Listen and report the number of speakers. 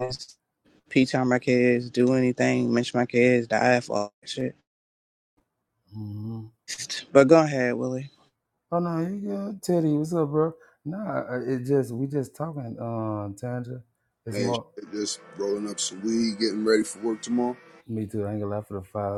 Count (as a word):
three